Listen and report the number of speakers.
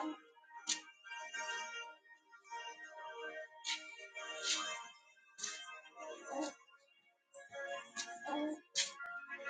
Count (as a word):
zero